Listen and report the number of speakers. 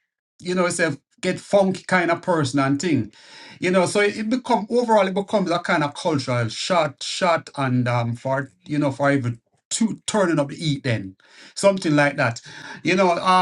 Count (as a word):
one